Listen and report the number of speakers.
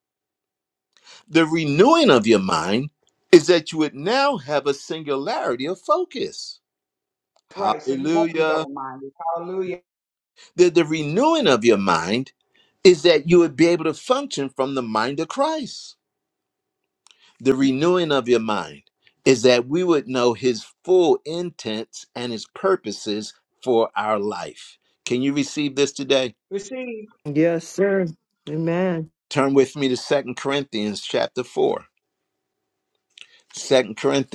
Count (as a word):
three